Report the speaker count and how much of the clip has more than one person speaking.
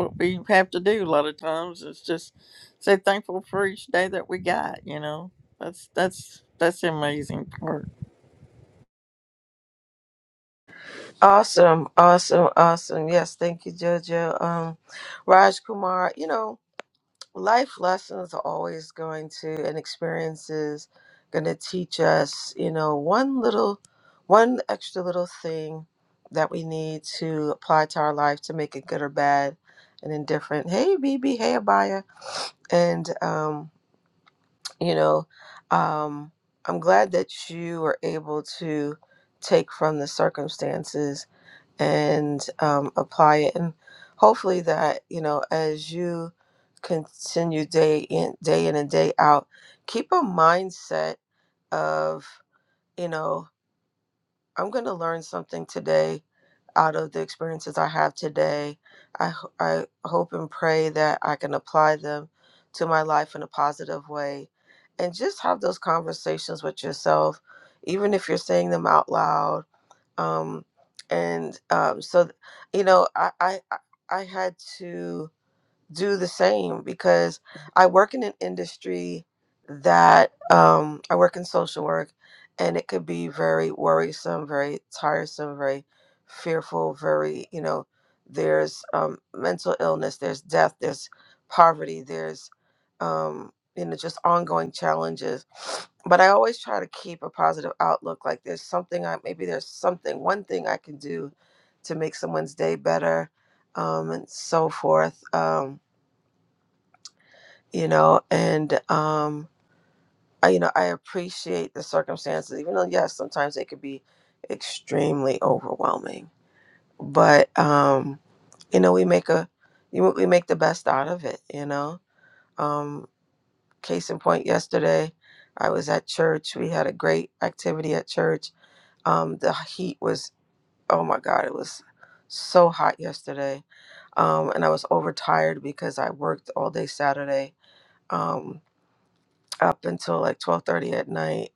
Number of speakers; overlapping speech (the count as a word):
two, no overlap